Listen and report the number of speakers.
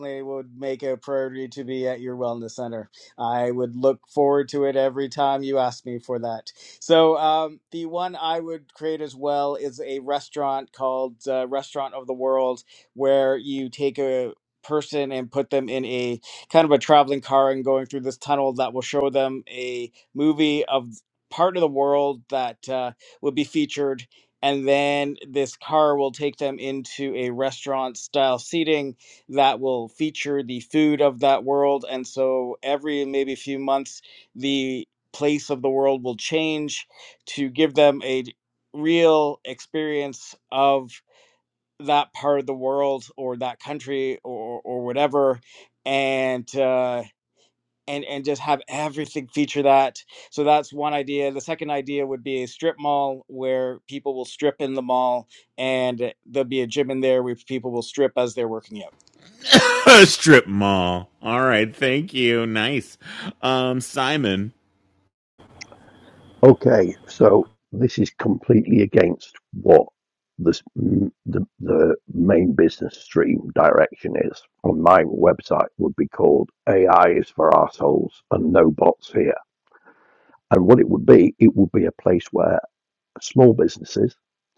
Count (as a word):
three